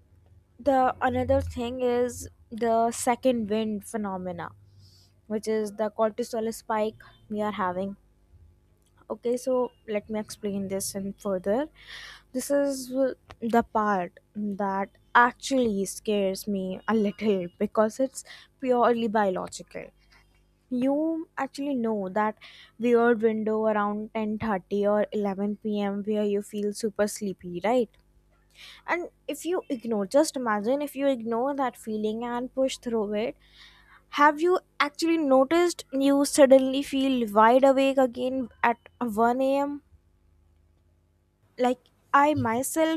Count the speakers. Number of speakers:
1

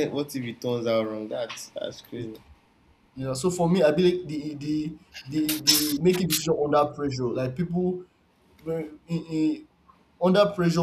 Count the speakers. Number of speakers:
2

